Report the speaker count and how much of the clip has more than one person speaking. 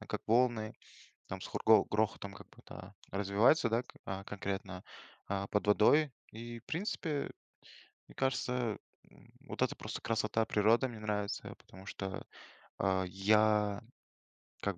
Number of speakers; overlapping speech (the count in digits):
1, no overlap